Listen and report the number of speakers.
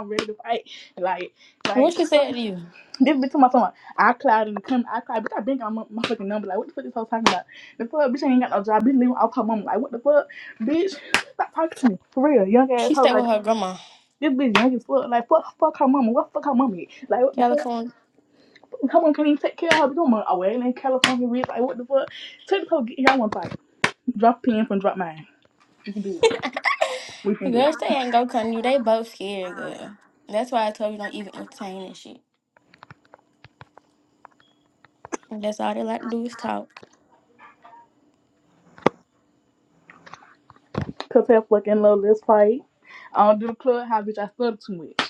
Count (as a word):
two